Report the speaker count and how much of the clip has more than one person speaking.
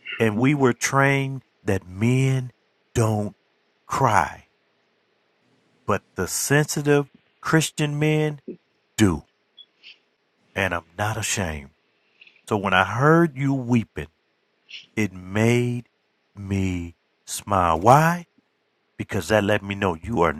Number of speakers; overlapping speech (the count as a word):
one, no overlap